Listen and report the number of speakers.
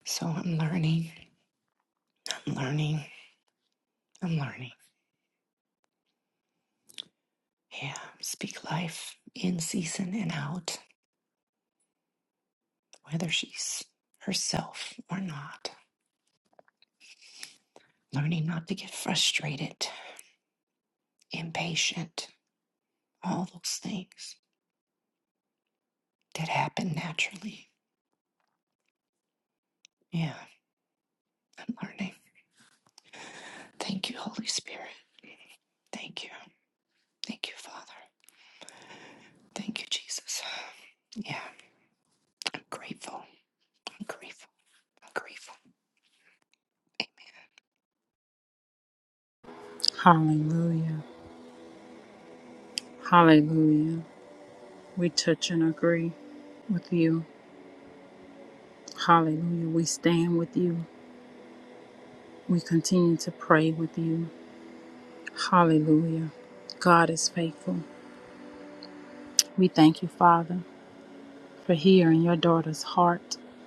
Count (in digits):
2